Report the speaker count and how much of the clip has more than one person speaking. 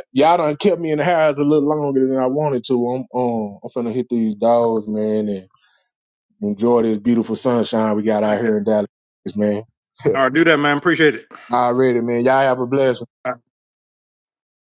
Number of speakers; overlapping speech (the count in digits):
2, about 2%